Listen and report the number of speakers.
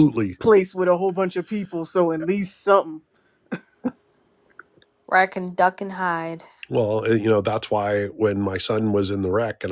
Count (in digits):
3